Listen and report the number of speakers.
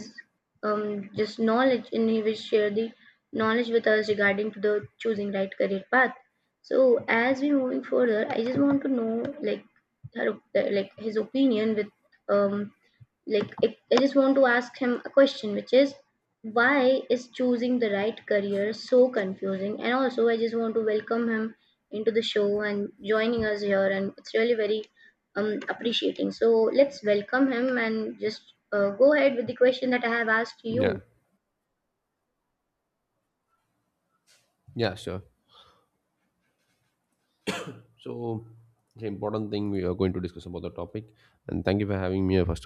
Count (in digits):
2